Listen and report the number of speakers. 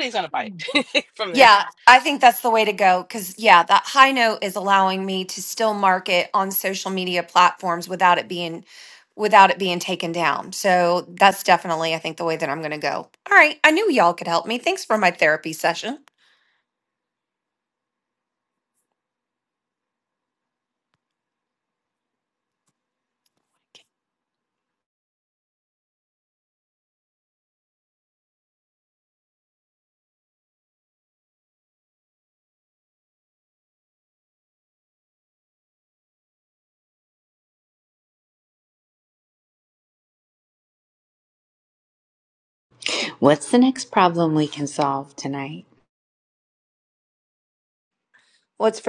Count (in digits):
3